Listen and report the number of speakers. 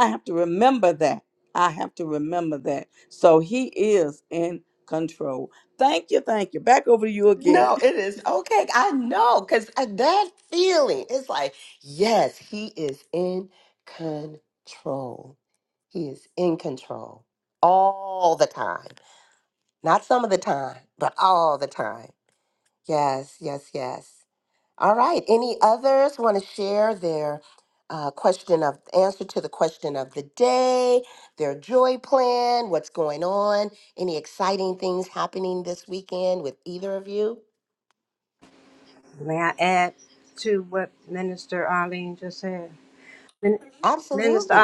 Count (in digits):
3